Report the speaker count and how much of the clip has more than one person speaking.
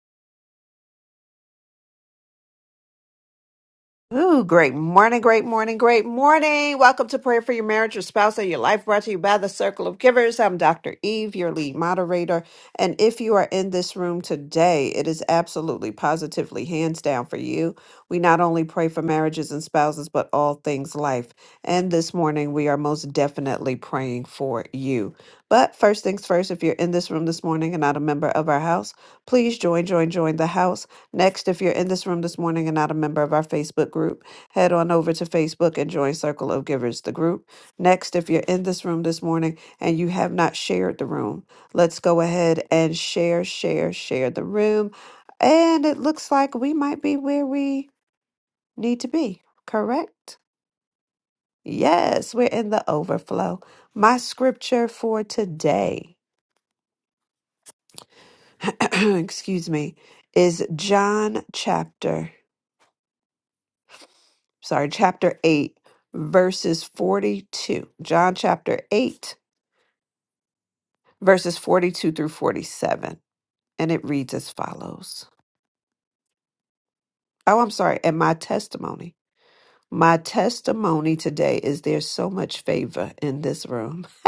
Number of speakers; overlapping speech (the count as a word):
one, no overlap